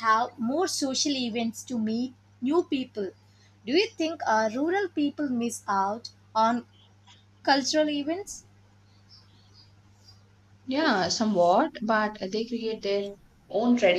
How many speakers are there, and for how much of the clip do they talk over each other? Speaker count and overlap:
2, no overlap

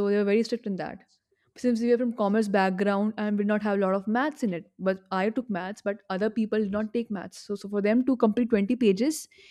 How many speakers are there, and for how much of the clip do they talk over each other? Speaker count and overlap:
1, no overlap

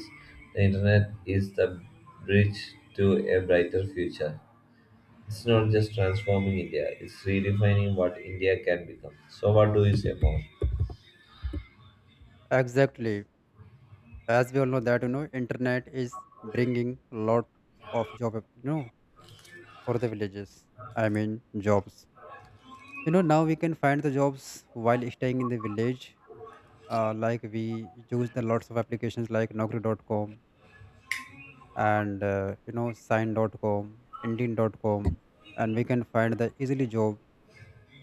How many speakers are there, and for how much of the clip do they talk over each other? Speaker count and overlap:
2, no overlap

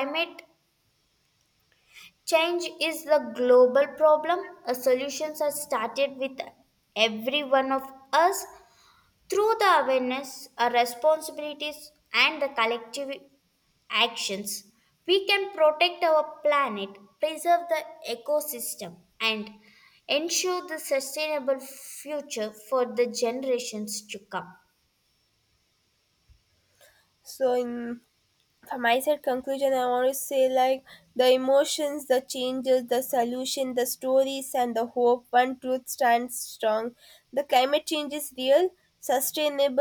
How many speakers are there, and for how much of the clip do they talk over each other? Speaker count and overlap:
2, no overlap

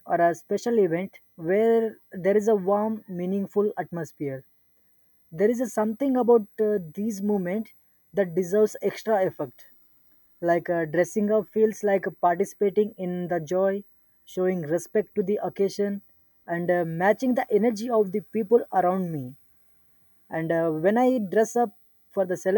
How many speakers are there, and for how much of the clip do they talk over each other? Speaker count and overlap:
1, no overlap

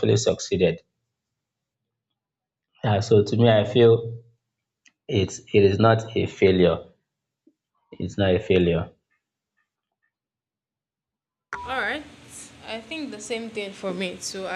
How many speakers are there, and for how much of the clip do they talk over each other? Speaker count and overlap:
2, no overlap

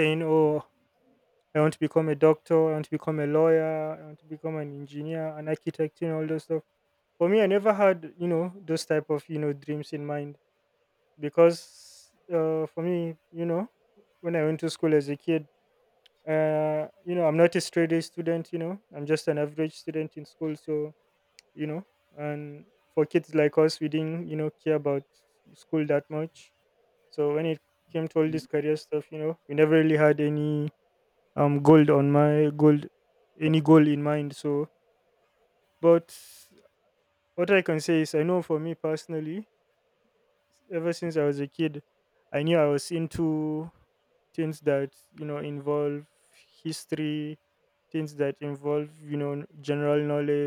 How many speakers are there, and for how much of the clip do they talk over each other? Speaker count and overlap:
1, no overlap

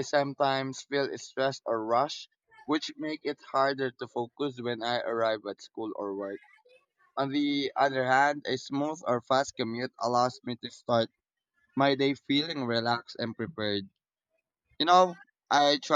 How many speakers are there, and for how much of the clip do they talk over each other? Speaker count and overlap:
1, no overlap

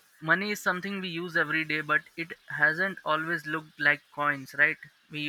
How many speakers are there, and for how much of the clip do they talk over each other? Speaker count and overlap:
1, no overlap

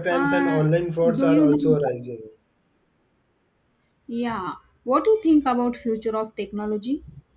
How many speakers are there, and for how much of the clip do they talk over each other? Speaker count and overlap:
2, about 15%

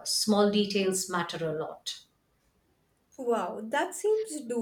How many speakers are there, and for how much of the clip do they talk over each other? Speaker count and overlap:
2, no overlap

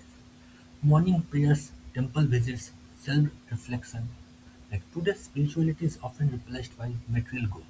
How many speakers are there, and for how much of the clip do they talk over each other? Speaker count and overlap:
1, no overlap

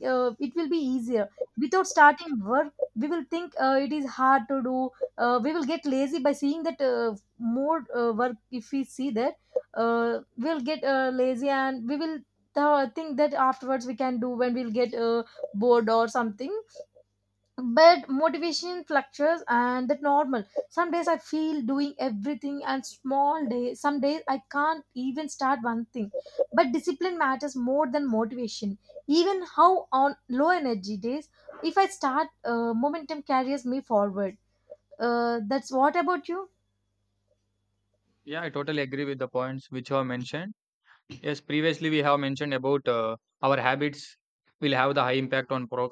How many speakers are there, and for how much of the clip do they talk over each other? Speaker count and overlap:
2, no overlap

